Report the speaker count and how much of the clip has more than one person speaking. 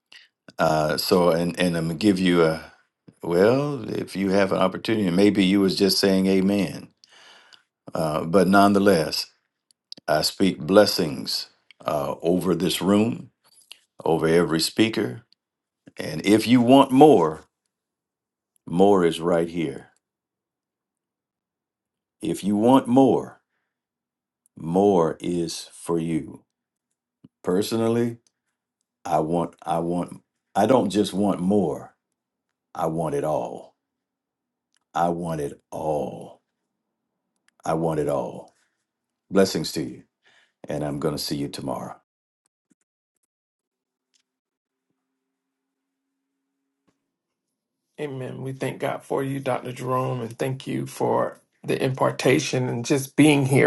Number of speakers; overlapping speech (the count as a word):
two, no overlap